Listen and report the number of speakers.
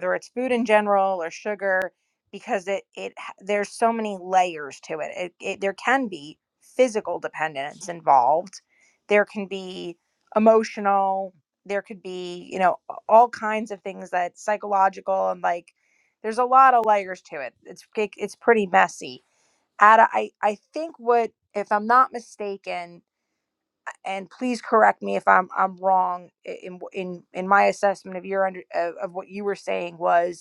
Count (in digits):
1